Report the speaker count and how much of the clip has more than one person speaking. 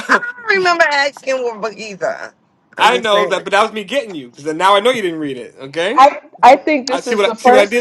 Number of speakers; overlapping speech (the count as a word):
three, about 21%